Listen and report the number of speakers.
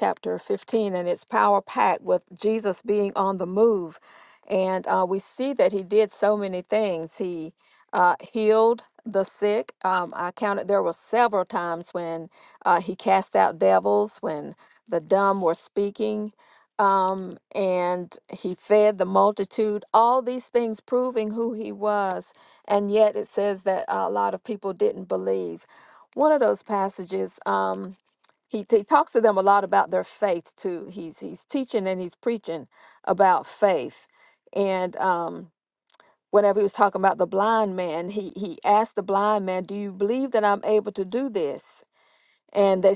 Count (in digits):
1